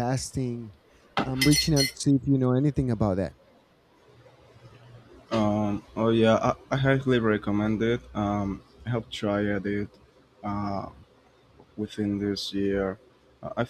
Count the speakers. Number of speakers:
two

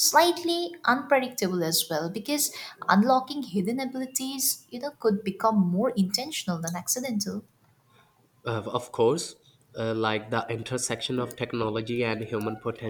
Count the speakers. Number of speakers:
two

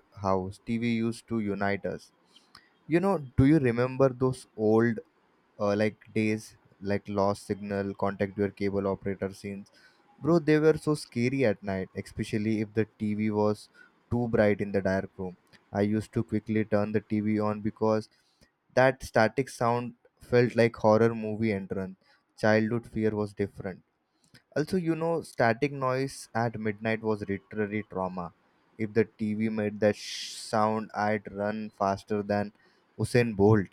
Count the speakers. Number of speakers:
one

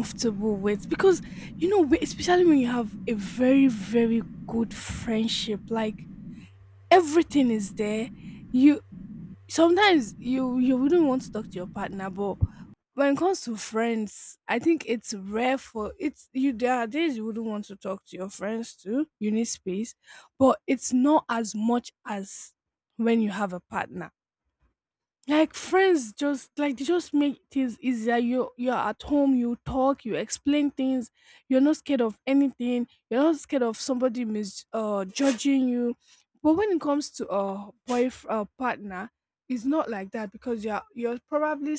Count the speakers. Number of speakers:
one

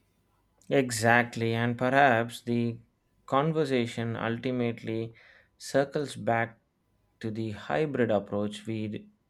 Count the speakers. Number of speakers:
one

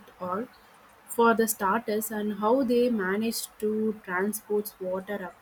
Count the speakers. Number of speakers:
one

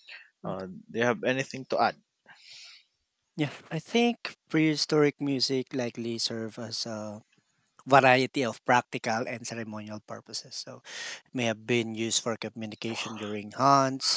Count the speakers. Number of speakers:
two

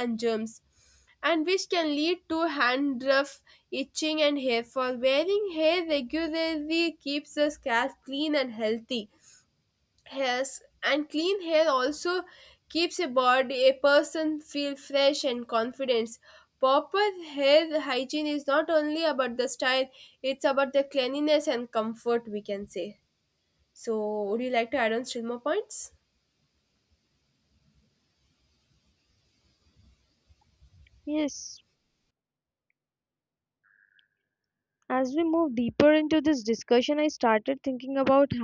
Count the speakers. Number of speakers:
two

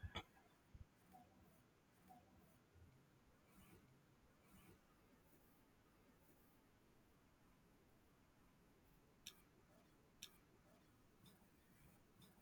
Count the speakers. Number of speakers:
zero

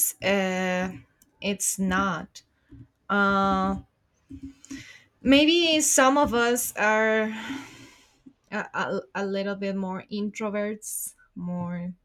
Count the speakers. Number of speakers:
one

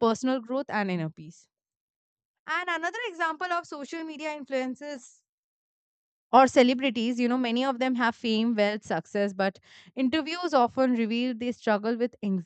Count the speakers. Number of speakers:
one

